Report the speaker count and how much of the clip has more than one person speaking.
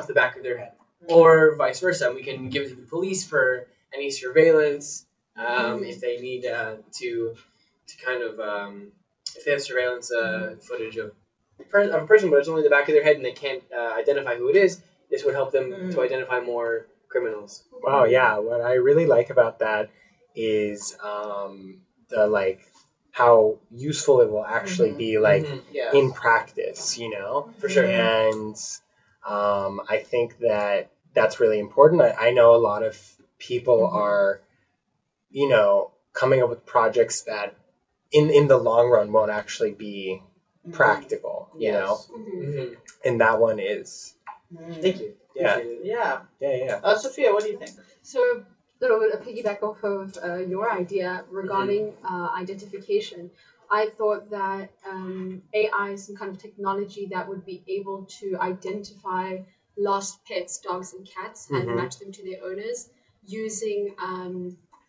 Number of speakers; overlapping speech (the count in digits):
4, about 8%